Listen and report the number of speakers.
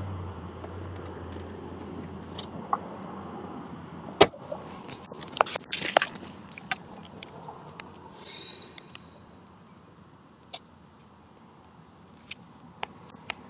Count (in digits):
0